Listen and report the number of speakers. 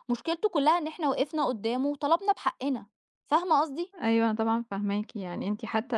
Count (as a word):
two